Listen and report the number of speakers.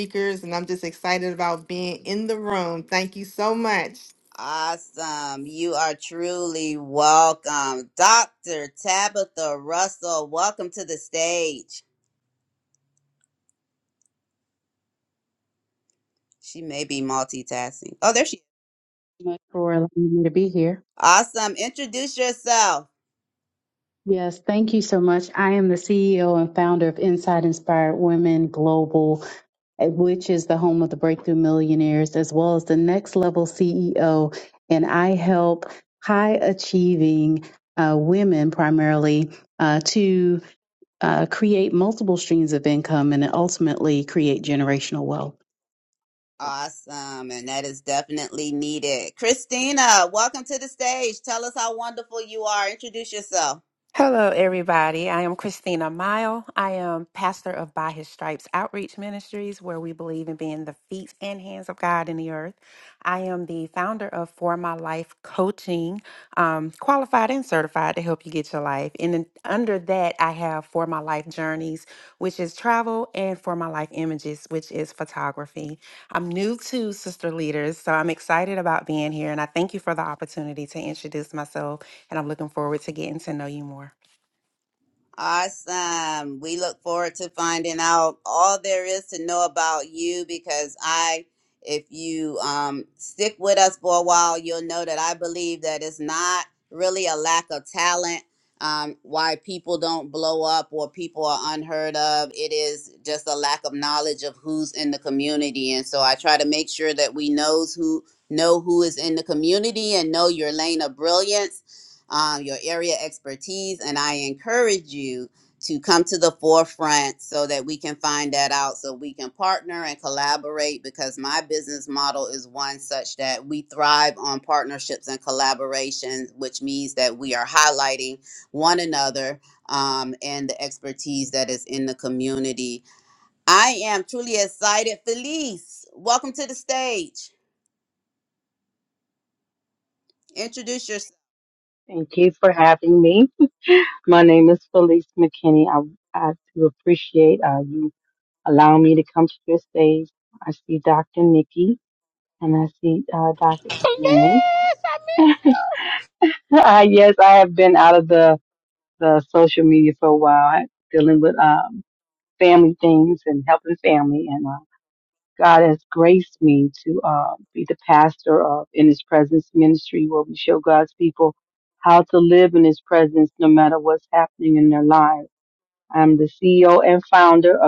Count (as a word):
six